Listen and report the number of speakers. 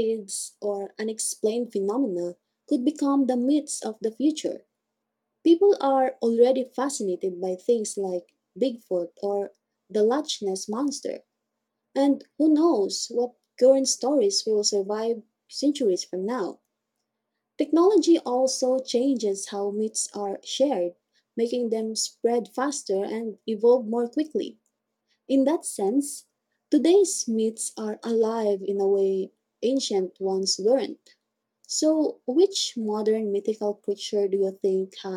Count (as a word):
one